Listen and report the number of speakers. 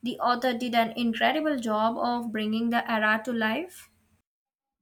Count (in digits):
1